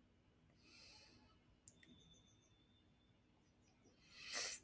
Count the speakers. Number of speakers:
zero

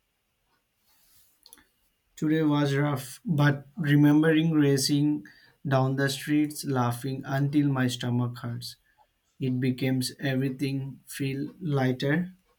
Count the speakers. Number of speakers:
one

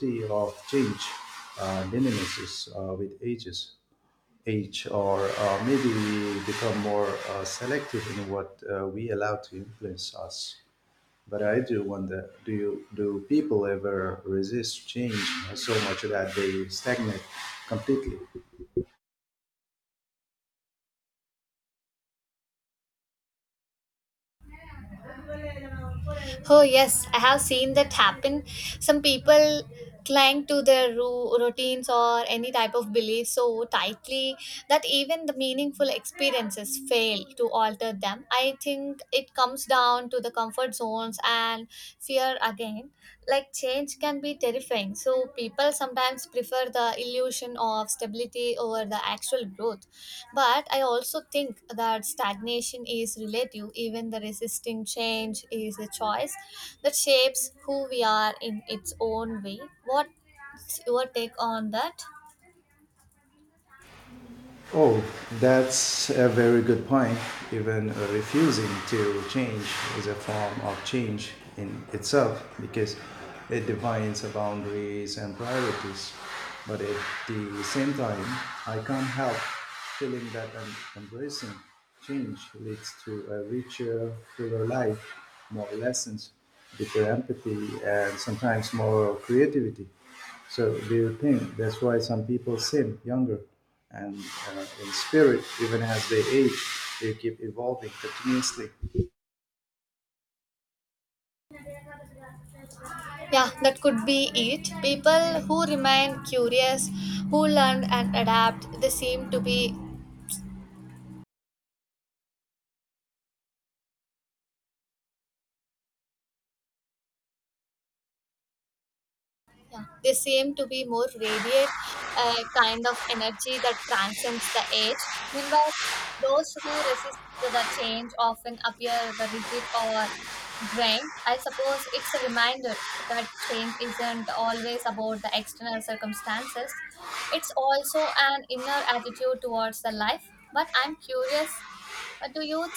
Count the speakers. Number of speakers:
two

